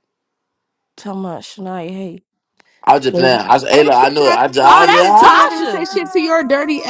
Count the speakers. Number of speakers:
3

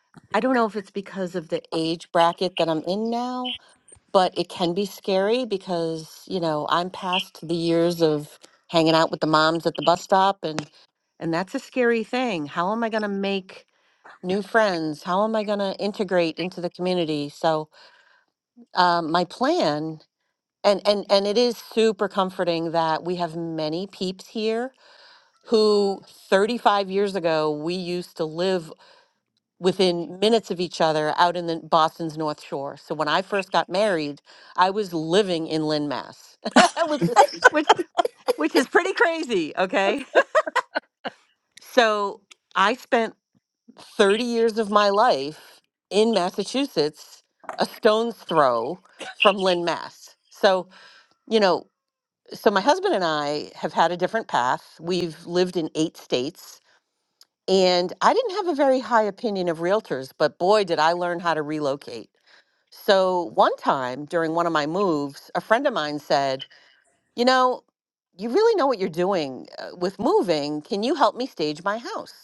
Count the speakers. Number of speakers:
1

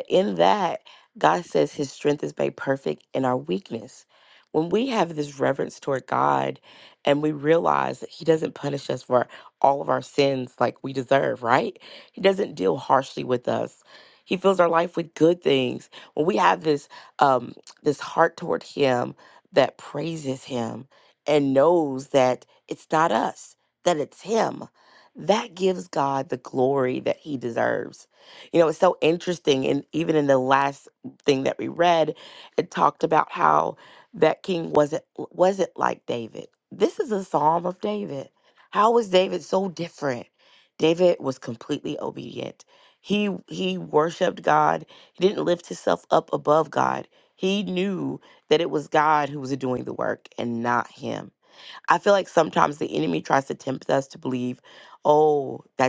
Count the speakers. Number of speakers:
1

